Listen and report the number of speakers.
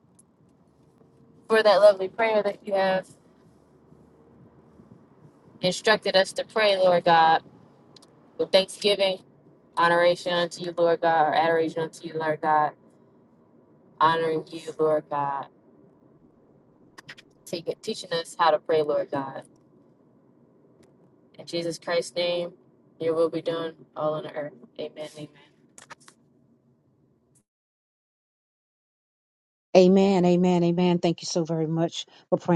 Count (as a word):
two